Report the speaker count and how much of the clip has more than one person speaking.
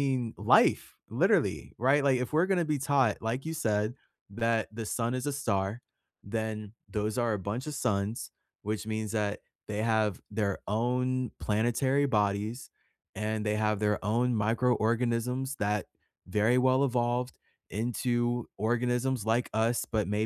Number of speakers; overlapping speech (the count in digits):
1, no overlap